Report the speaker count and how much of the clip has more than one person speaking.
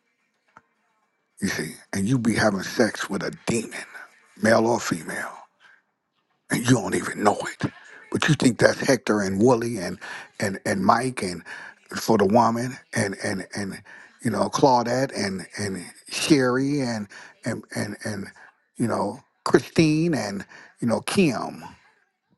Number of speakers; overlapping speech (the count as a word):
one, no overlap